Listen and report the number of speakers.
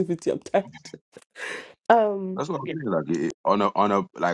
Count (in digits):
2